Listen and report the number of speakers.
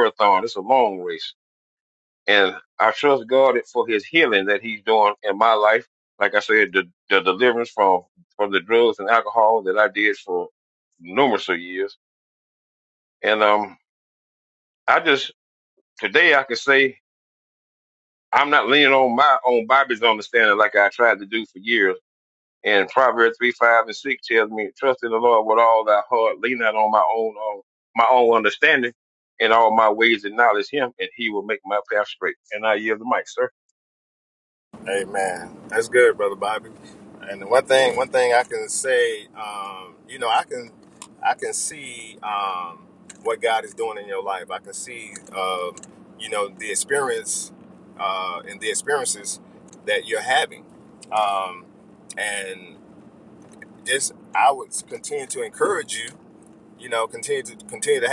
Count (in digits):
2